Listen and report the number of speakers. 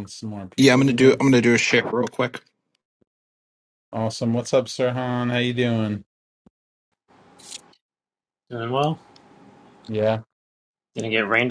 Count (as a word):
three